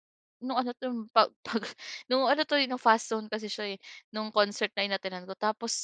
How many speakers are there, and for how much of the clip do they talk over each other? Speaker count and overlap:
1, no overlap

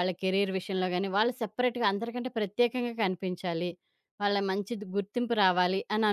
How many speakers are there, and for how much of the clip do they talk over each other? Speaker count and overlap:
1, no overlap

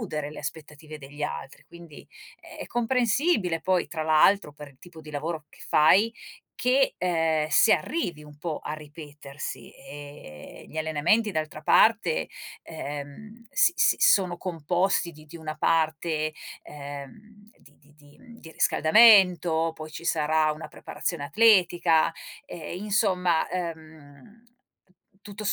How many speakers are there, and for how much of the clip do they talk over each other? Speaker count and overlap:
1, no overlap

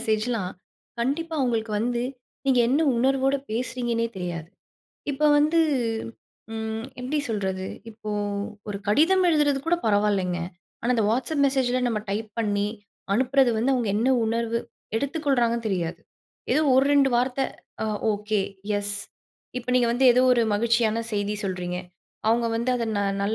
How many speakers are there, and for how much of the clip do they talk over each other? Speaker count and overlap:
1, no overlap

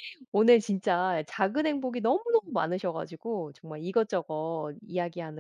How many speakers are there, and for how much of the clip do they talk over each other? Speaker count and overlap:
1, no overlap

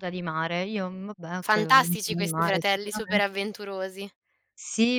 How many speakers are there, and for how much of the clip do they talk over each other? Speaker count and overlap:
2, about 26%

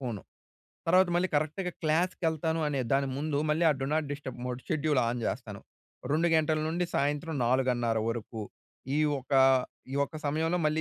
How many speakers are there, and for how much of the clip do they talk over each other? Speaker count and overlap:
1, no overlap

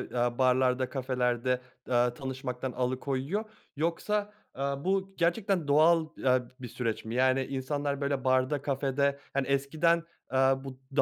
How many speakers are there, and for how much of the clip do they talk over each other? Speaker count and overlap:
1, no overlap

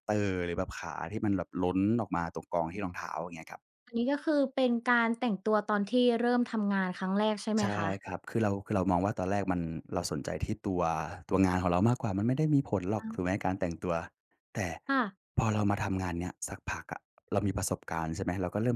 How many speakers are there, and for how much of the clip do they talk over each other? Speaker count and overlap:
2, about 3%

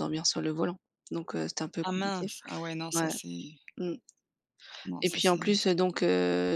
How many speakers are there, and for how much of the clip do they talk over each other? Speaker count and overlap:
2, about 19%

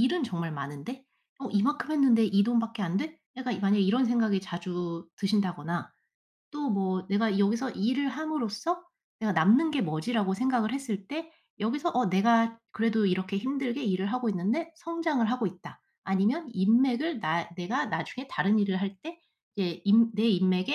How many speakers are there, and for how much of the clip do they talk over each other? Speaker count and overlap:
1, no overlap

